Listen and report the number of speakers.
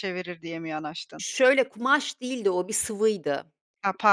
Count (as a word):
two